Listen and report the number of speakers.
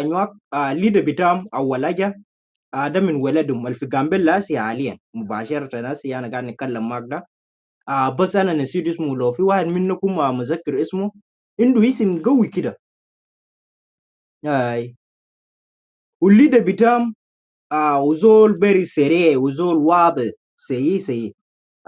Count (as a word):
one